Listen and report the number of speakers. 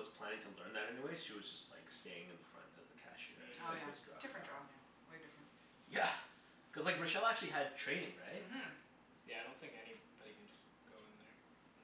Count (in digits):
3